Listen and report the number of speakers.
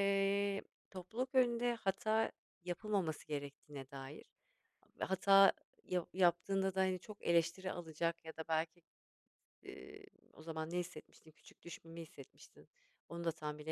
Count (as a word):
one